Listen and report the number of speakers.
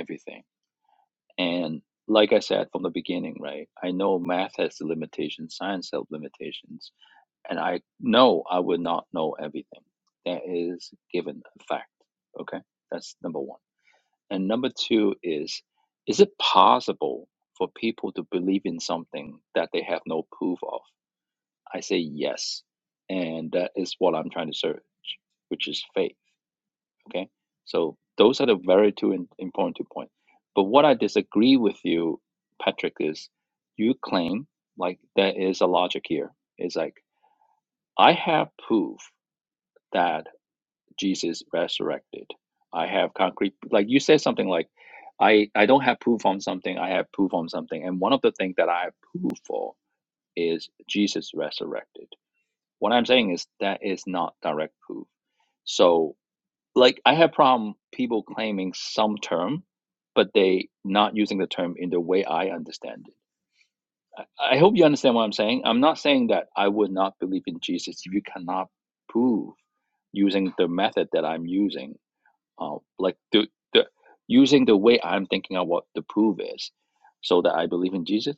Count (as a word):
one